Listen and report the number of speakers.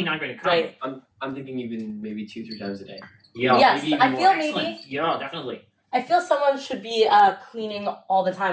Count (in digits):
3